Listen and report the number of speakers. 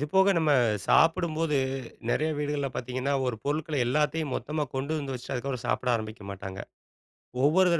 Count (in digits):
1